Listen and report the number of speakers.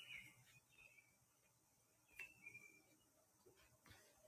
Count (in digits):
0